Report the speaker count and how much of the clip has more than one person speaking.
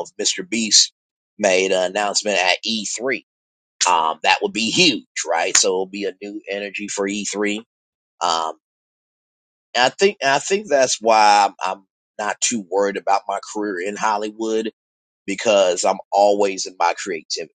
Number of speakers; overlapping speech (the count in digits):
1, no overlap